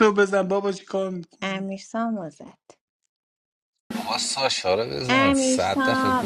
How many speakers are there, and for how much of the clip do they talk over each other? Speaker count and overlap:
3, about 18%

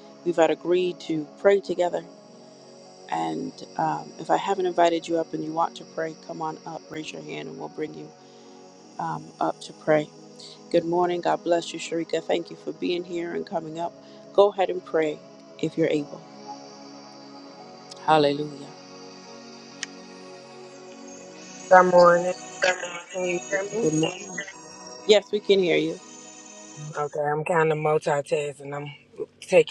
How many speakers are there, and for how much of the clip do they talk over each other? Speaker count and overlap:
2, under 1%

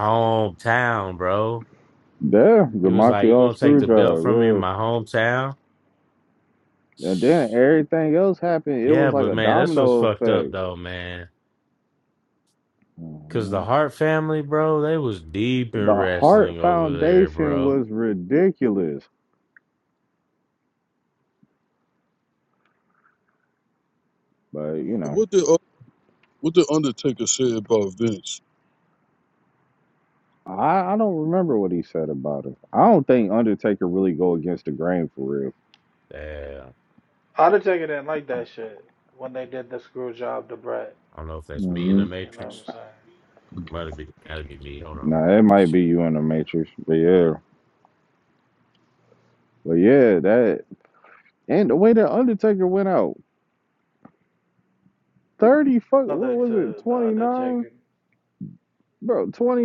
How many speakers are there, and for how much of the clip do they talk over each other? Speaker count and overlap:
4, about 14%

